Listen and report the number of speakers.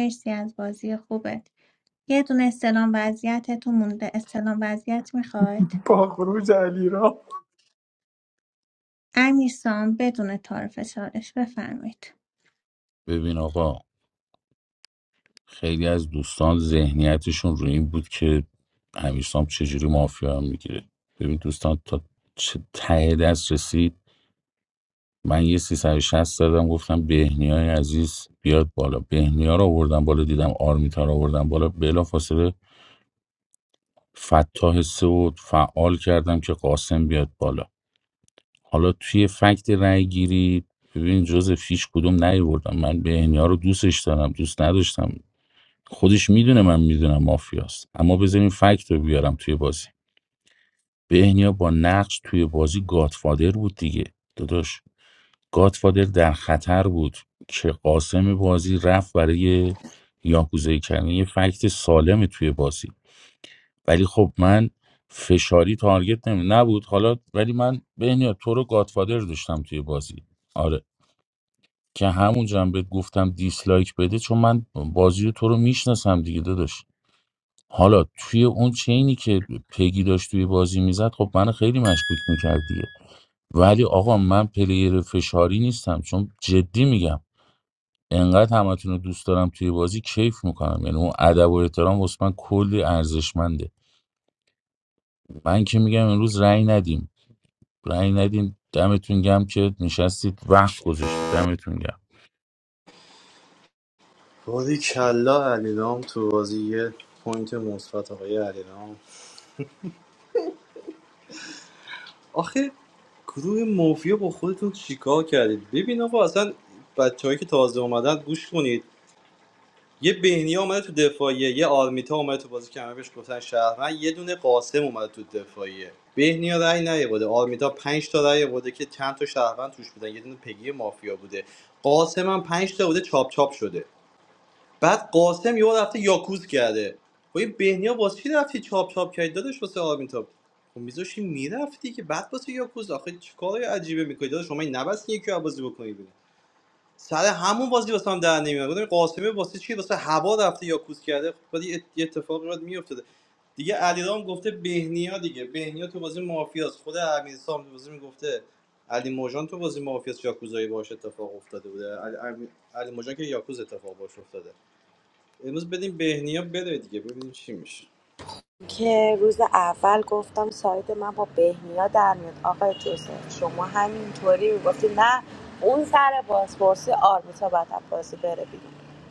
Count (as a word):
five